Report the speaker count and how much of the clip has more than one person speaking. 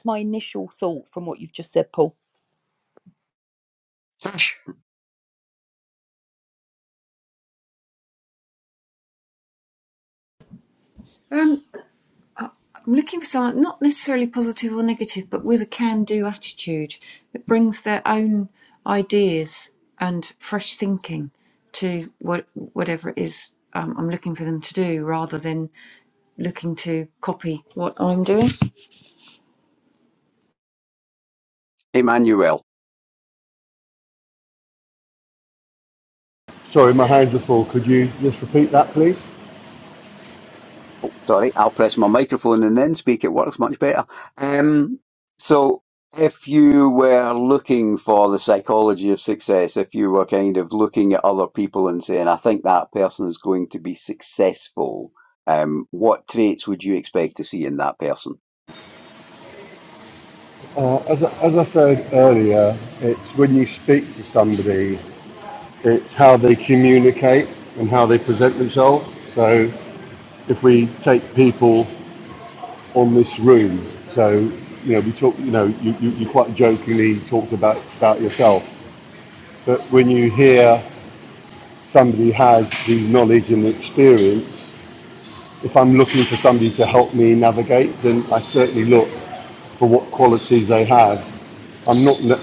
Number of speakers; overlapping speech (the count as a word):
four, no overlap